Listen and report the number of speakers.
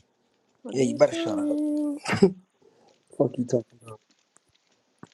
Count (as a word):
two